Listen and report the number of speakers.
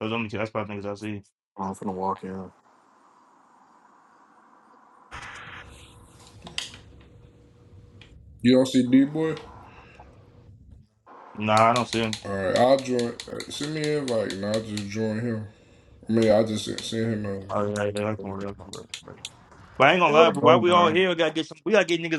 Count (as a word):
three